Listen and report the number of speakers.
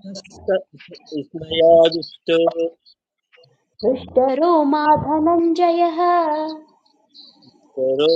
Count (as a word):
two